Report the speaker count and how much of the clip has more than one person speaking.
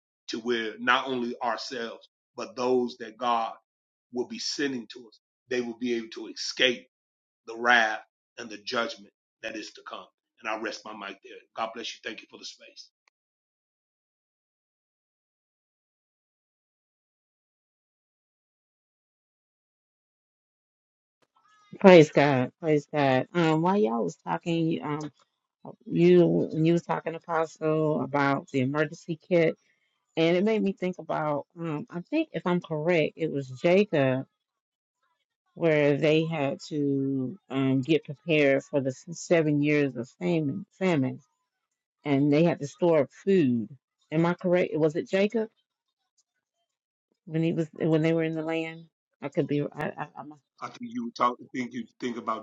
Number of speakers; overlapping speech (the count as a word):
two, no overlap